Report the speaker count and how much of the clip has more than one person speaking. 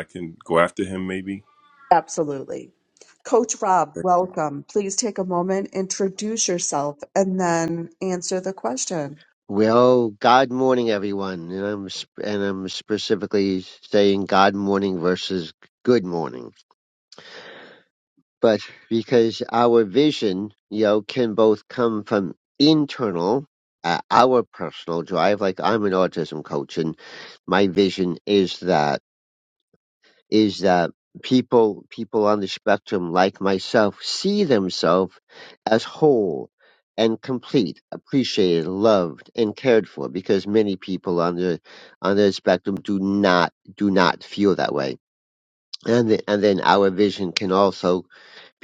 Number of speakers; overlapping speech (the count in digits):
3, no overlap